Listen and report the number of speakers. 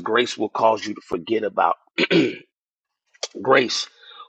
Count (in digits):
1